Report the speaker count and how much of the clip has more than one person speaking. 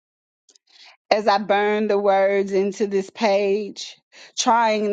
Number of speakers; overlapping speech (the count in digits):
1, no overlap